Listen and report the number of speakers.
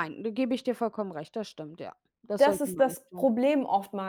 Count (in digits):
2